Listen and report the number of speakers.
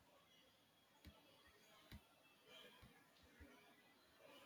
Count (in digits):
0